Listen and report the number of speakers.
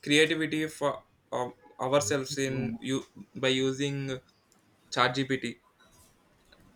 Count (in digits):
1